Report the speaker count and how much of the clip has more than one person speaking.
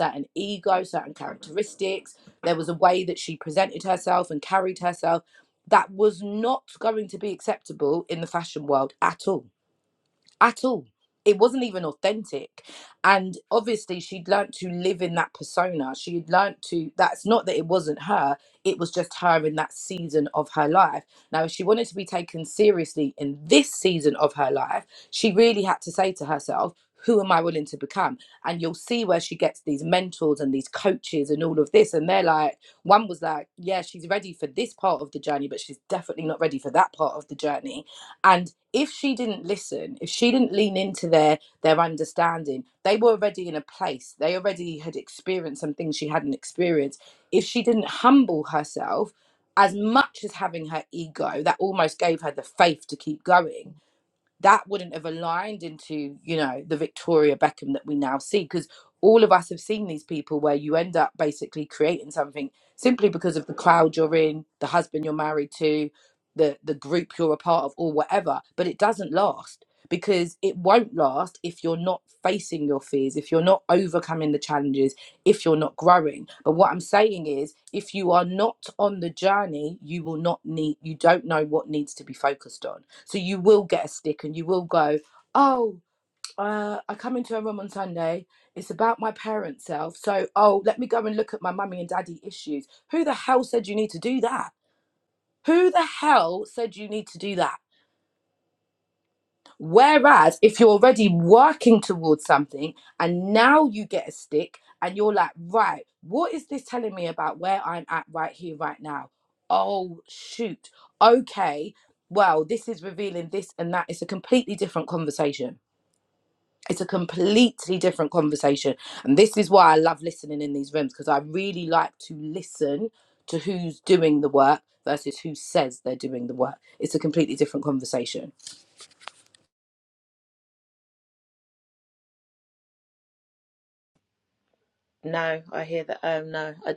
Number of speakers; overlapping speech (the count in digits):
2, no overlap